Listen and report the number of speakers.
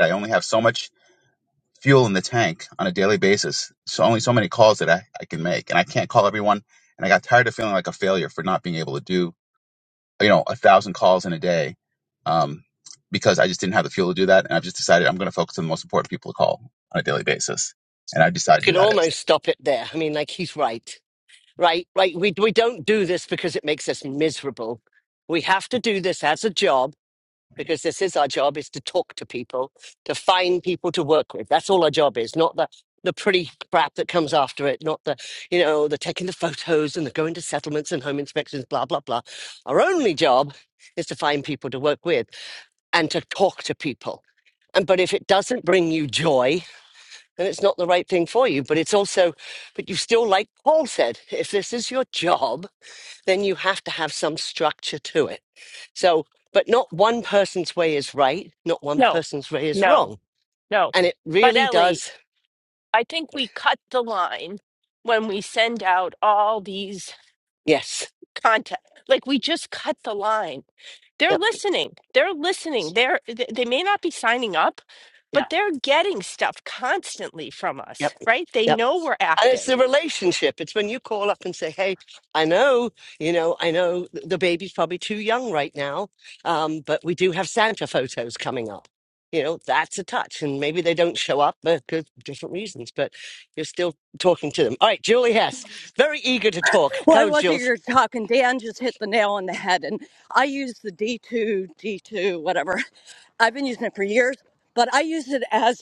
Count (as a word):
four